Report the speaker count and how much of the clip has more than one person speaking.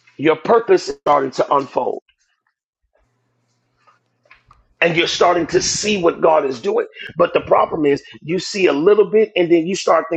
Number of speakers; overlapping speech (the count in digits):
1, no overlap